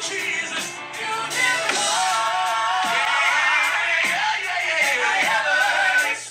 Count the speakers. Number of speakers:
0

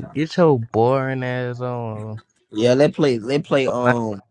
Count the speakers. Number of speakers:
2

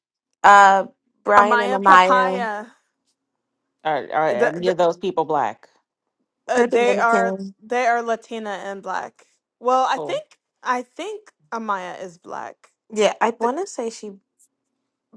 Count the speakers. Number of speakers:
3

